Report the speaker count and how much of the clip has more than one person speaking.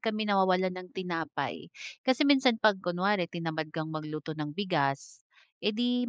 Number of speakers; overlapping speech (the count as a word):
one, no overlap